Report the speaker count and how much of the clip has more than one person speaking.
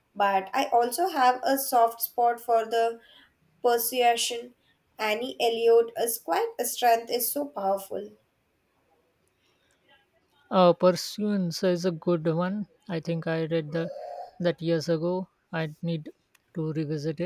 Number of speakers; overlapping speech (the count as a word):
two, no overlap